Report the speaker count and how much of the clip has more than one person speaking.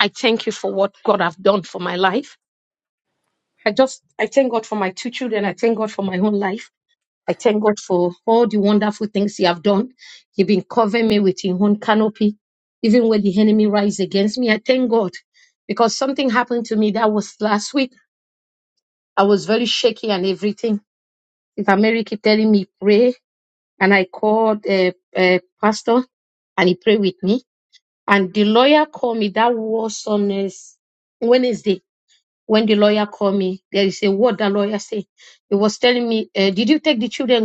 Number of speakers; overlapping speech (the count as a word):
one, no overlap